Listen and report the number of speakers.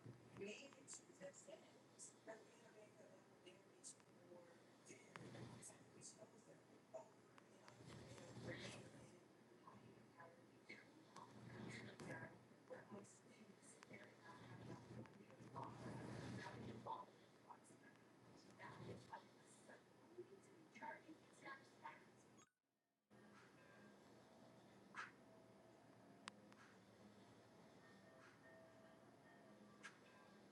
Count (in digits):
0